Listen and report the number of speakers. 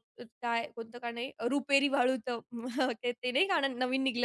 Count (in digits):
1